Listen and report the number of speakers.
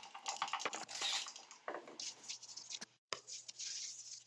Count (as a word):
zero